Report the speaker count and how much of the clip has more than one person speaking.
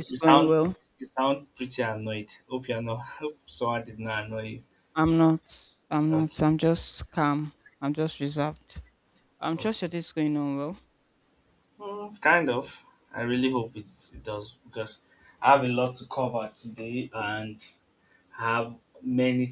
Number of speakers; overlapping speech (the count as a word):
two, about 5%